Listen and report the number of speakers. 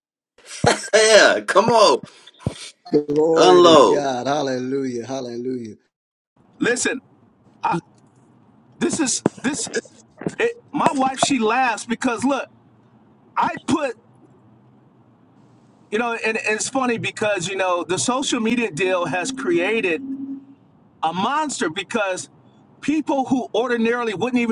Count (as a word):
three